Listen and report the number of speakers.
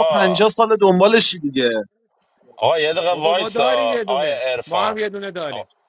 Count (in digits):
3